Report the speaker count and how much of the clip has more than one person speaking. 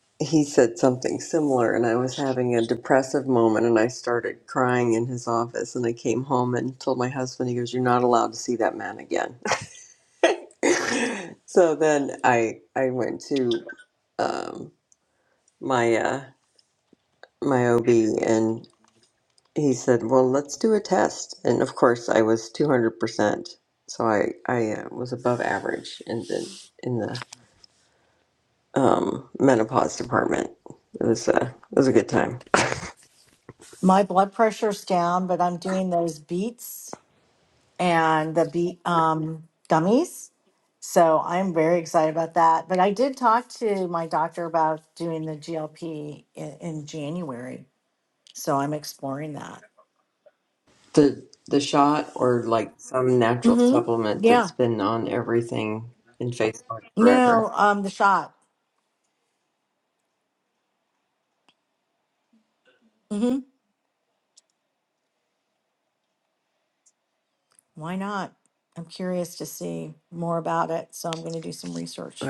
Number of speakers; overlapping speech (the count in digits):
2, about 2%